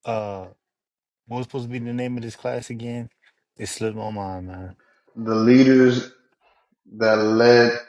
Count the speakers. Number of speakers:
two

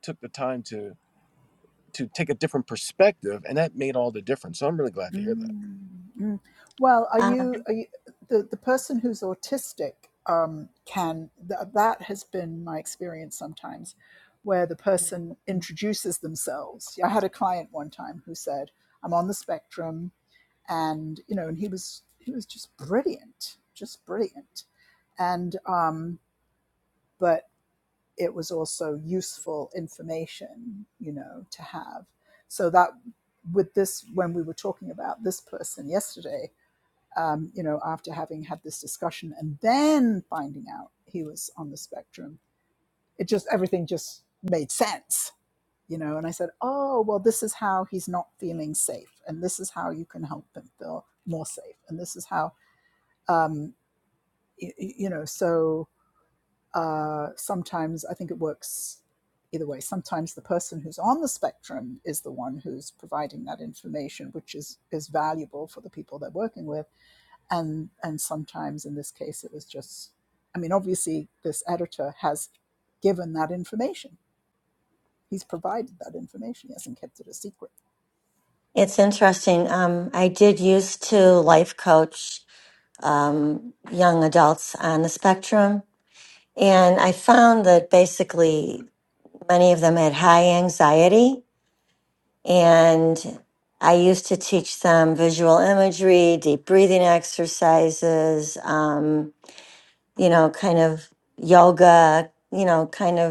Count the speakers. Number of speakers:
three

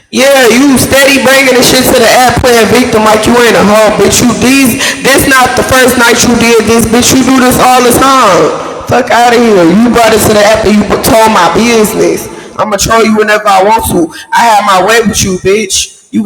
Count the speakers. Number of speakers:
one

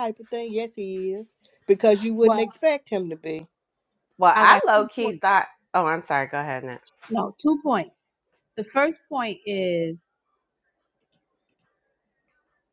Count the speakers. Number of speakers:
three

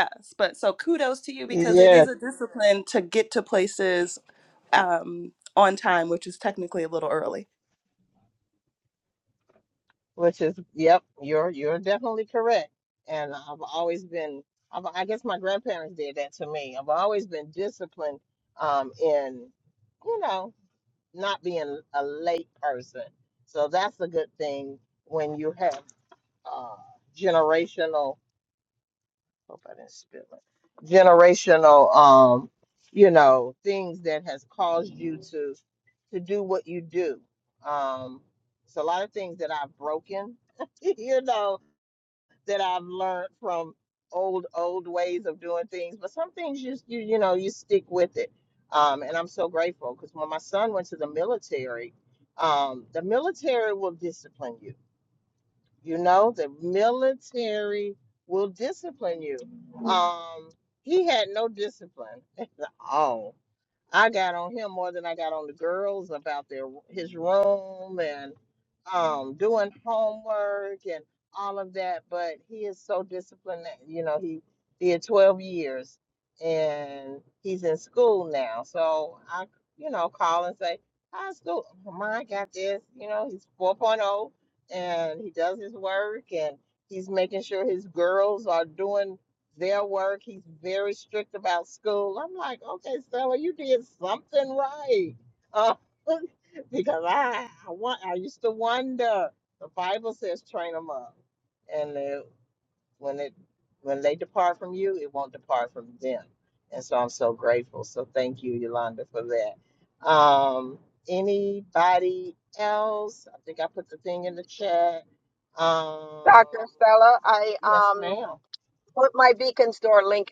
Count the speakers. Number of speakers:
three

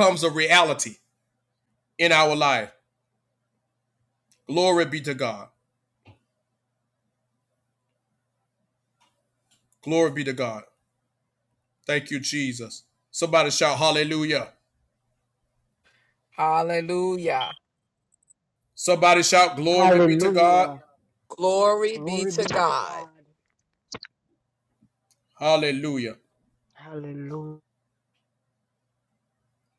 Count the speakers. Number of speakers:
three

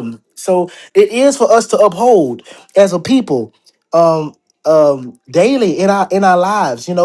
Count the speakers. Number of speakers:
one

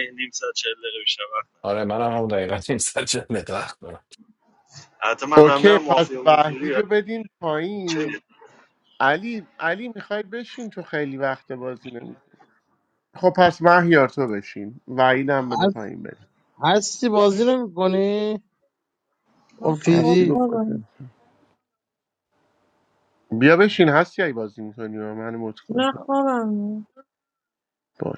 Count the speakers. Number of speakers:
five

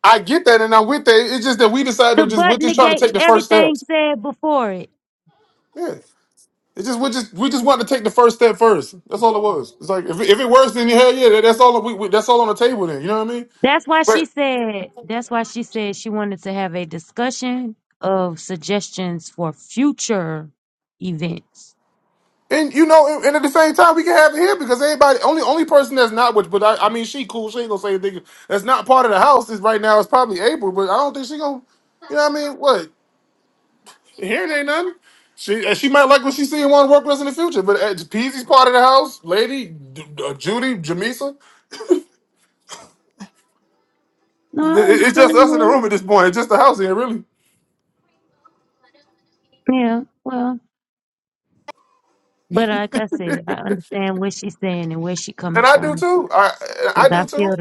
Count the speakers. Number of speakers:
two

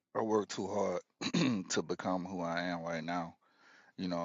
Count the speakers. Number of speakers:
one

